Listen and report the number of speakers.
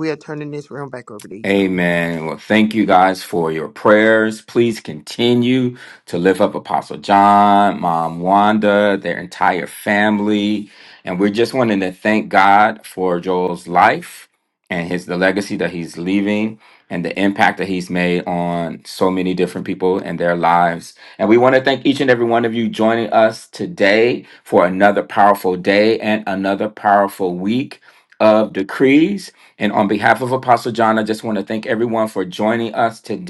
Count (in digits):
2